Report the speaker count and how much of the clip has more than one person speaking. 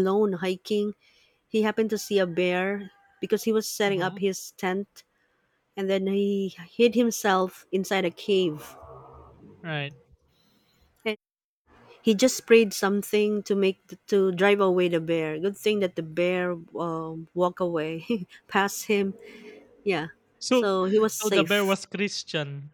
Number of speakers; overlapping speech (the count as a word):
two, about 4%